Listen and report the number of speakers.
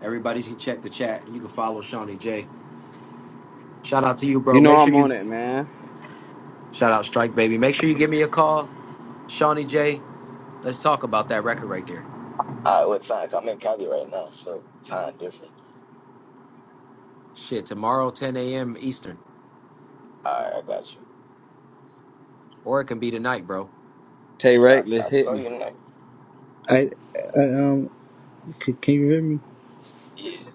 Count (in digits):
4